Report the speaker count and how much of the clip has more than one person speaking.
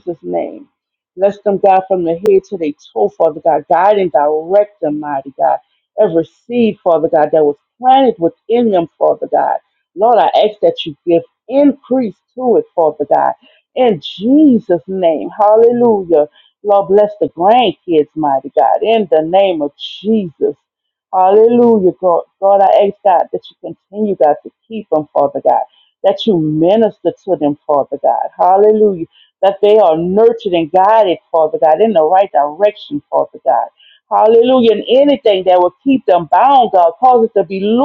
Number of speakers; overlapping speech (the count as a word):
one, no overlap